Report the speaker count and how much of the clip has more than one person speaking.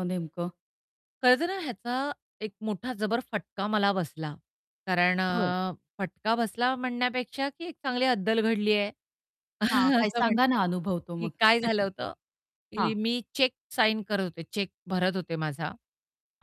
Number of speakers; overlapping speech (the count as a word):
two, about 7%